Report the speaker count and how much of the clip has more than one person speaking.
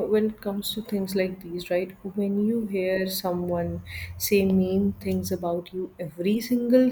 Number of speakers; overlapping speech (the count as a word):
one, no overlap